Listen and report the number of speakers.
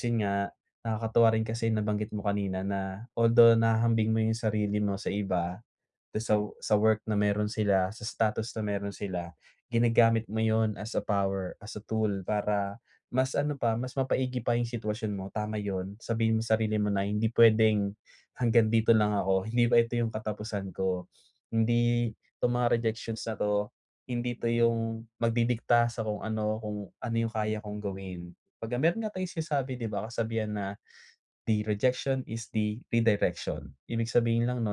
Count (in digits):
1